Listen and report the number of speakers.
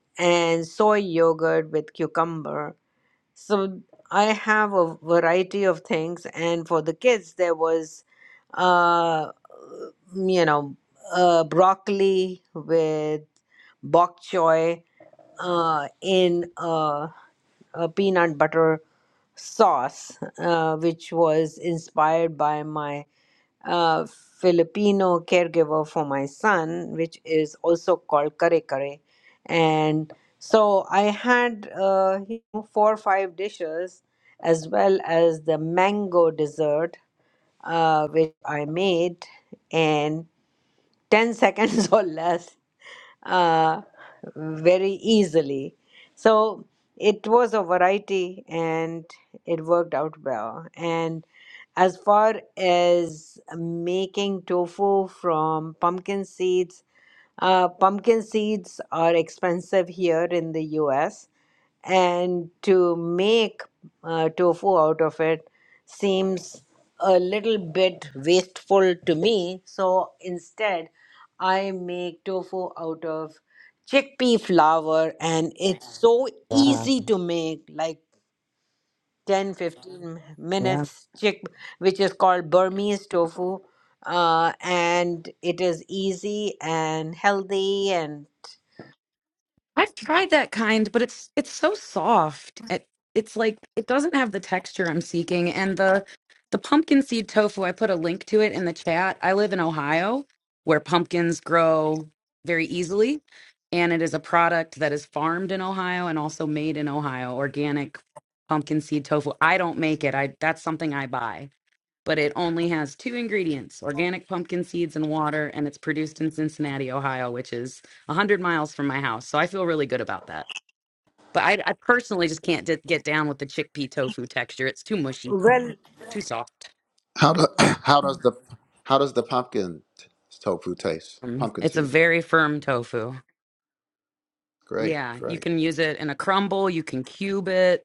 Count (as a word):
three